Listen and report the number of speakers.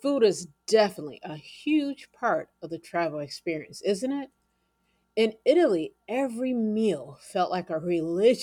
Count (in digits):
1